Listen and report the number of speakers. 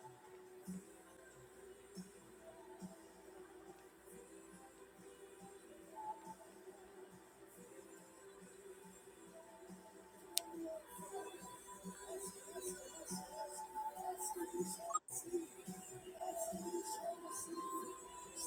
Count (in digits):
0